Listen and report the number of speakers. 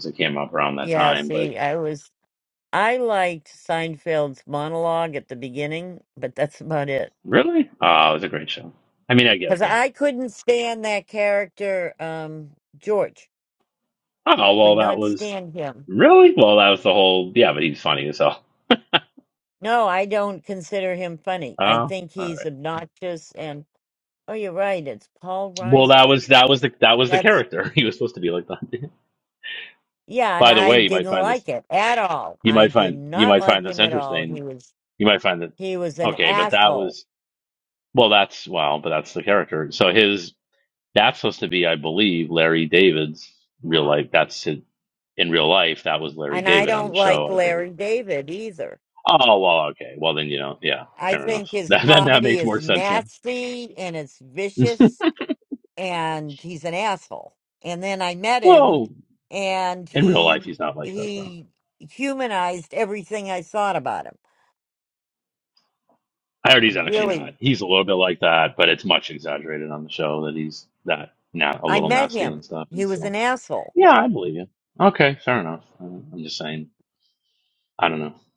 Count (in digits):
2